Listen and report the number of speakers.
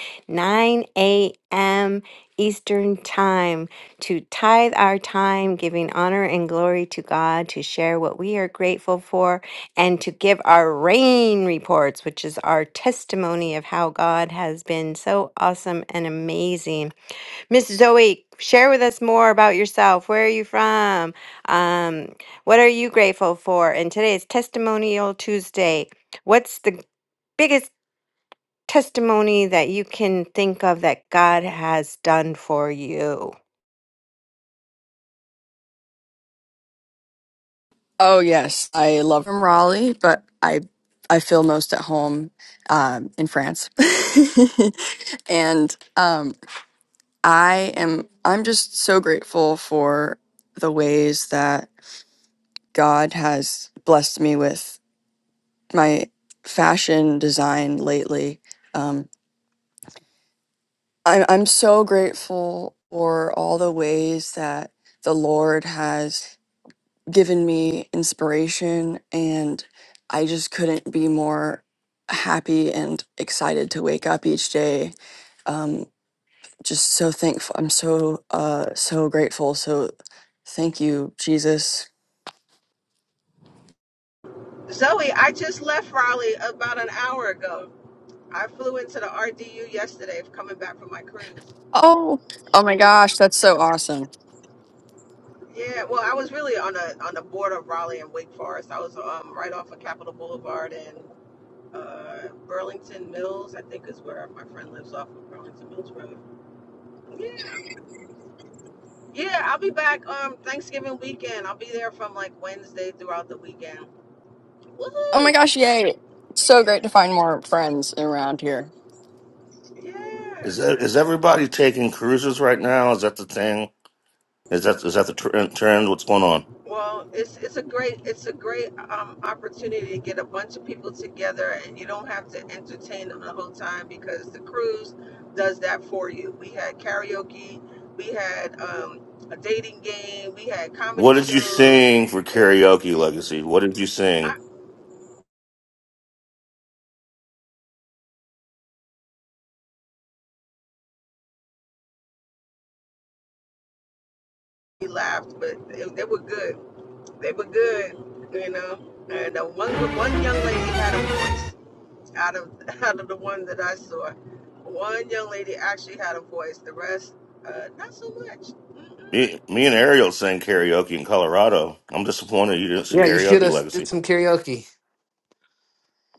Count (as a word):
five